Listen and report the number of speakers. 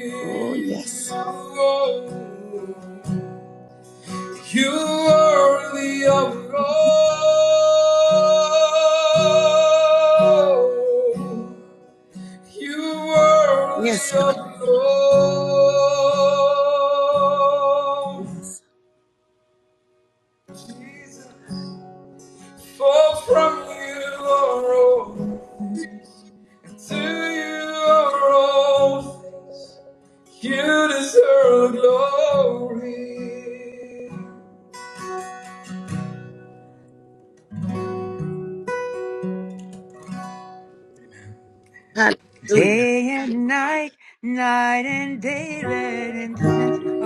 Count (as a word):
three